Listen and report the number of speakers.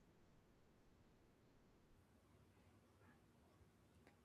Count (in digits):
0